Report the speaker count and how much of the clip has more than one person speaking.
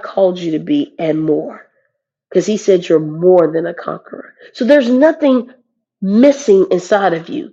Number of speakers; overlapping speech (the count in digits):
1, no overlap